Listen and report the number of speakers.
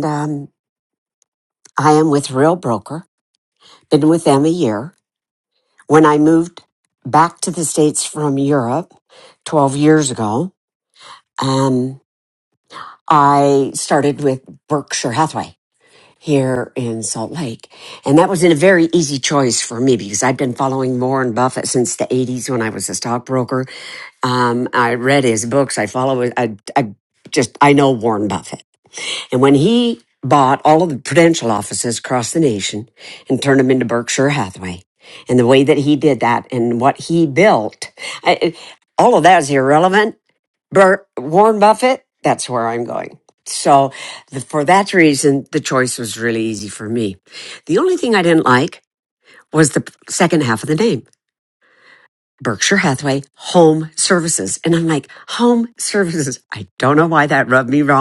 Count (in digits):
1